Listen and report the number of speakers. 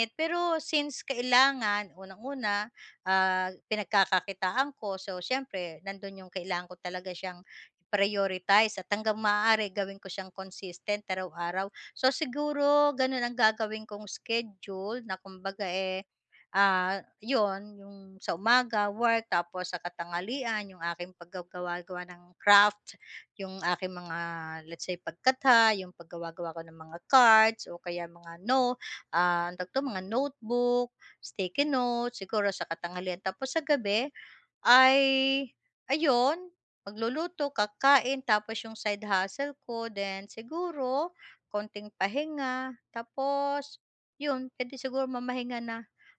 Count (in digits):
1